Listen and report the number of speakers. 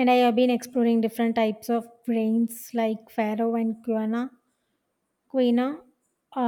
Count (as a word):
one